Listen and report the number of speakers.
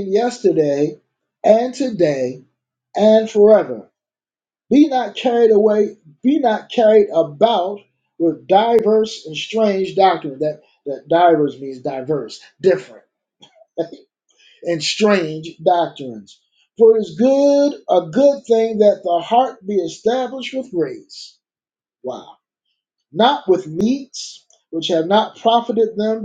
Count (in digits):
1